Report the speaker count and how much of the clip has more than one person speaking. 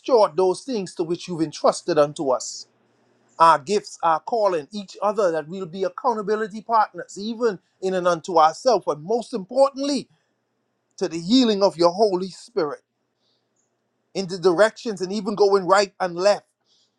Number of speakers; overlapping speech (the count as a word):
one, no overlap